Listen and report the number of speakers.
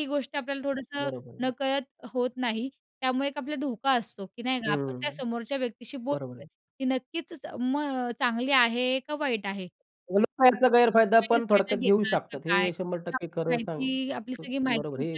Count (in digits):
2